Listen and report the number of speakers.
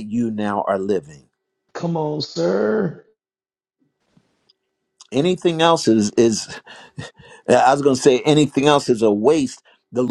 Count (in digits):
2